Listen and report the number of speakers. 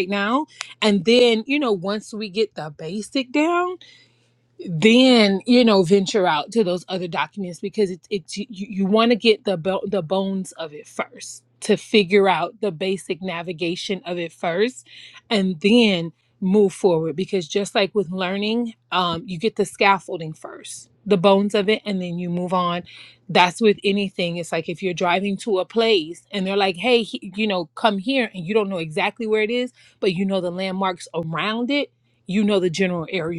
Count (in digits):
1